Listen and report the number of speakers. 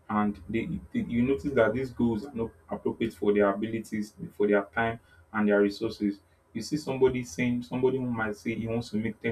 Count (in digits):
1